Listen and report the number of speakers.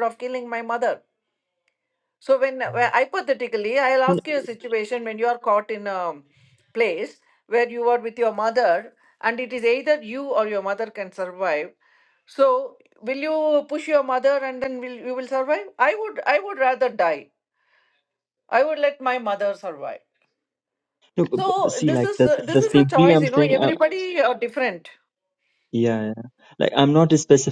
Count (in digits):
2